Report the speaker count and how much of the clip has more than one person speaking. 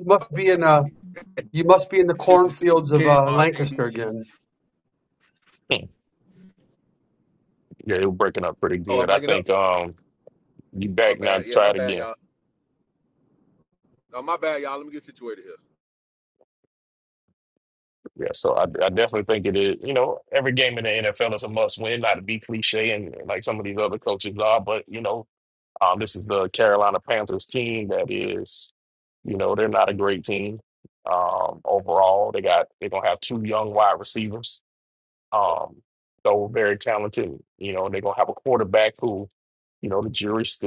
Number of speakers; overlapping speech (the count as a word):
three, about 4%